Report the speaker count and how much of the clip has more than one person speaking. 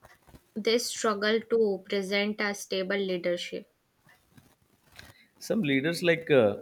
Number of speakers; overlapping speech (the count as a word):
two, no overlap